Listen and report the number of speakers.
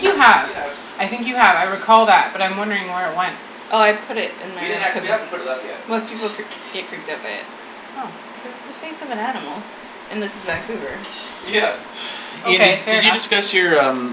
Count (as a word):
four